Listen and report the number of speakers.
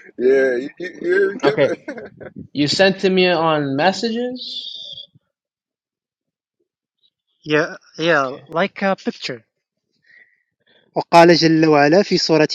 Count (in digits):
3